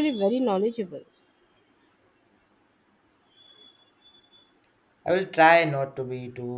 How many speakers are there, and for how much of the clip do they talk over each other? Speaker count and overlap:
two, no overlap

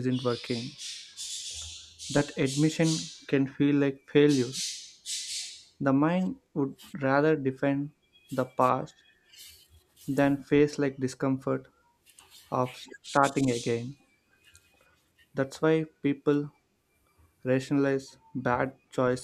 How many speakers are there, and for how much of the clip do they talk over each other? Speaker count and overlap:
one, no overlap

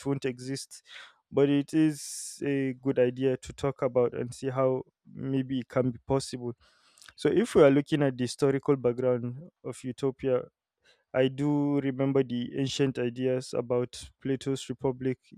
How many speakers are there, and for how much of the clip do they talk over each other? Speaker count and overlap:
one, no overlap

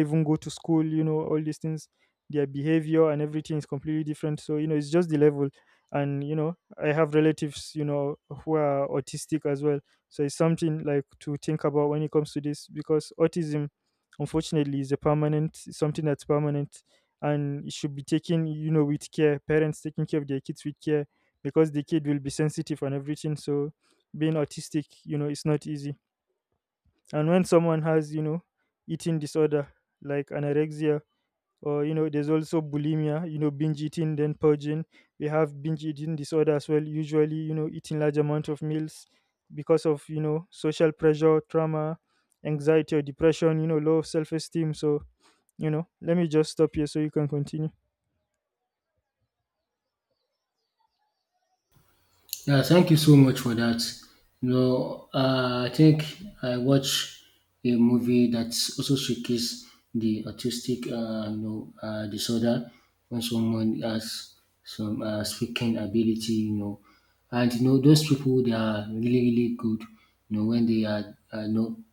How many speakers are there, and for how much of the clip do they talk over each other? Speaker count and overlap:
two, no overlap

